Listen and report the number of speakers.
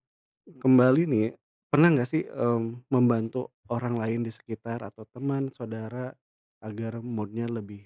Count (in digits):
1